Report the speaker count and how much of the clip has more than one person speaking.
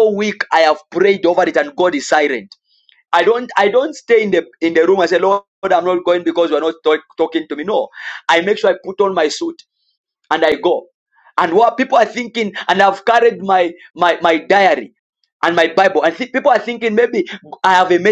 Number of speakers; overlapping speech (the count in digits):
1, no overlap